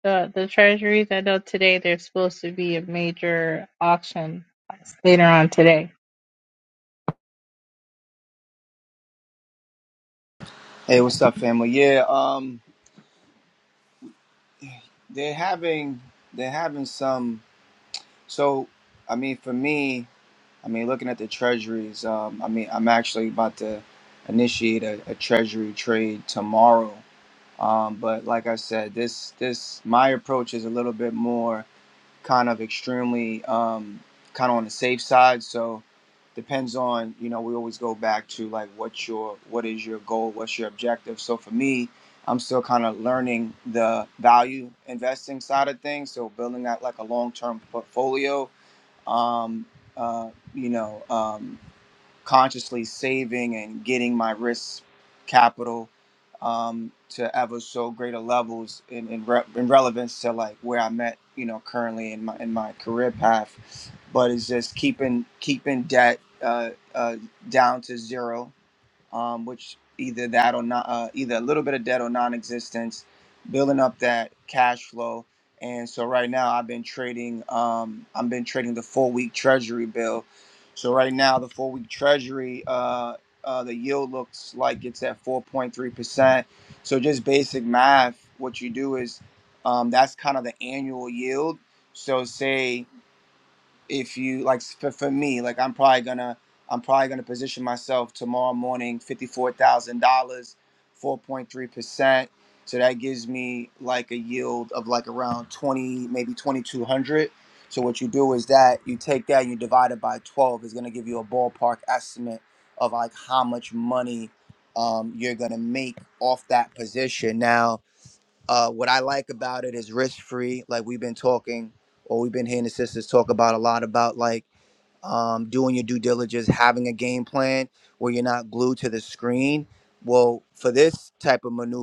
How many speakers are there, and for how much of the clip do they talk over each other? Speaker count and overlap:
two, no overlap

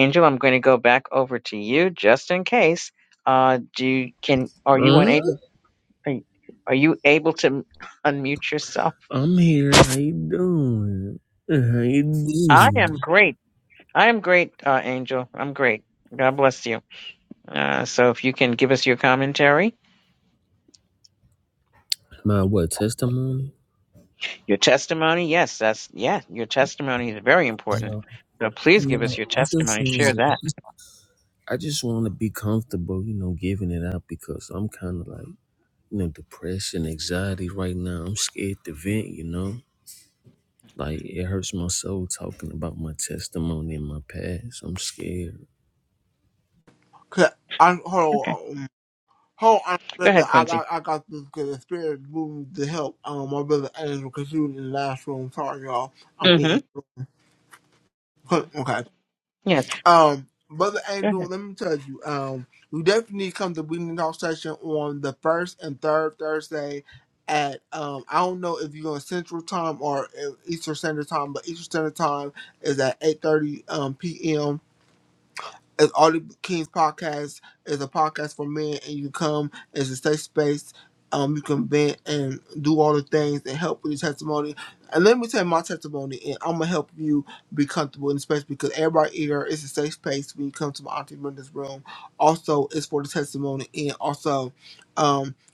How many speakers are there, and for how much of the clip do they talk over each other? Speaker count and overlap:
three, about 4%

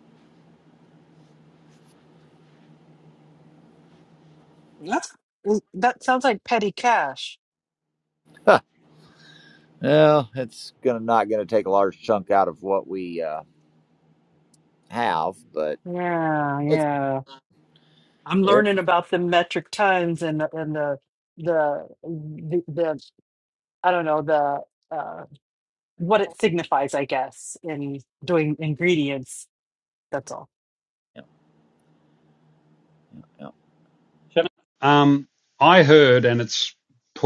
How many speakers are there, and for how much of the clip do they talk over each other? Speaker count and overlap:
three, about 1%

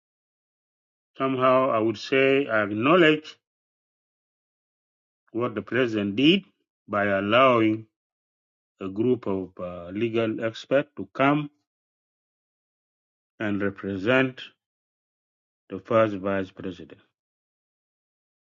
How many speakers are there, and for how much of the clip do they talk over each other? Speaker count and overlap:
one, no overlap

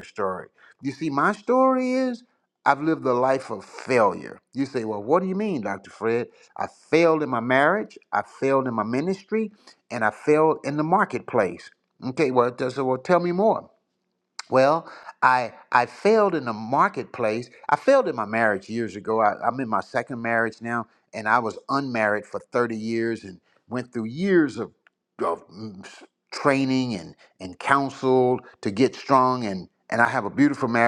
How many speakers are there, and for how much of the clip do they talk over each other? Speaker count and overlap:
one, no overlap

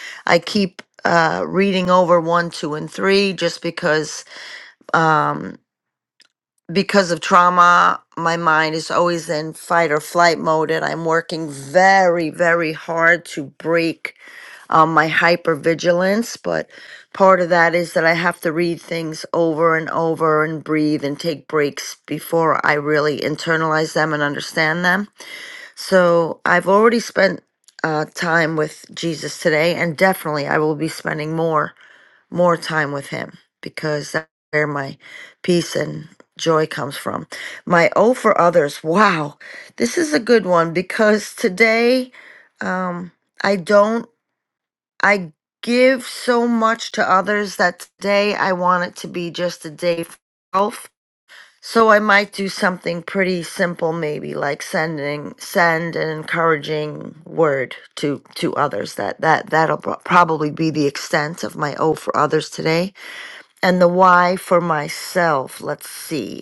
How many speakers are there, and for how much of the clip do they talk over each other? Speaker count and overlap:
one, no overlap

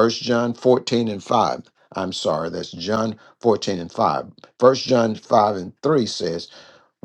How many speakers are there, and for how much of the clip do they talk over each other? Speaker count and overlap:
one, no overlap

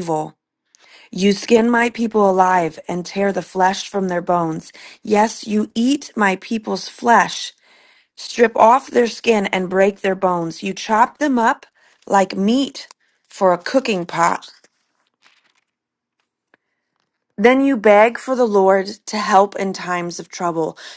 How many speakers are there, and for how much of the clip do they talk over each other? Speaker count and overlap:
one, no overlap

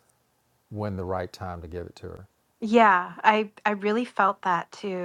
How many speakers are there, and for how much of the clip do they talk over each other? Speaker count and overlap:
two, no overlap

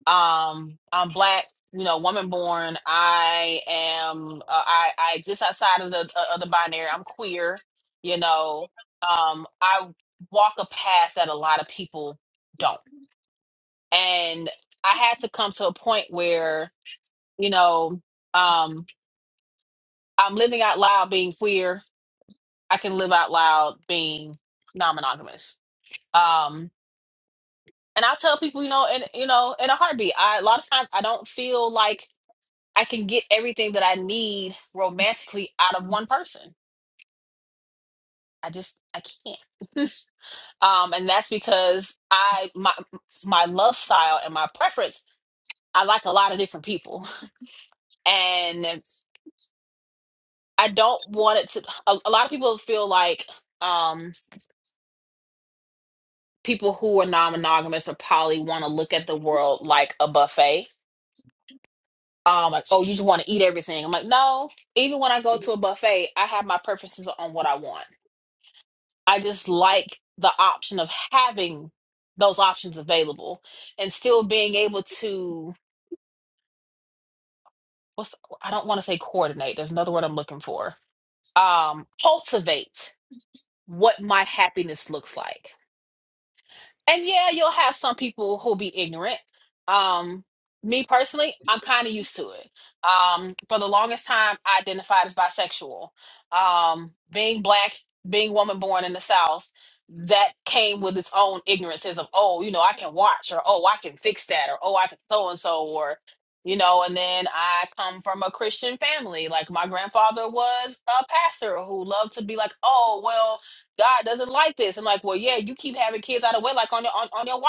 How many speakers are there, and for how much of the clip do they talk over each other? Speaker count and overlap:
one, no overlap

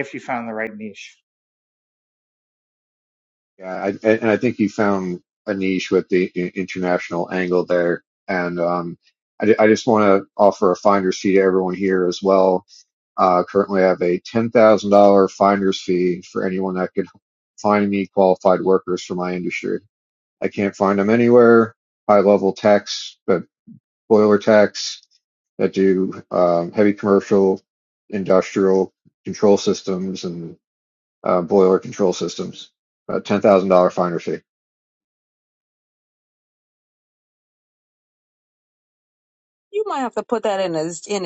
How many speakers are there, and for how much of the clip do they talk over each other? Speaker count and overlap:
three, no overlap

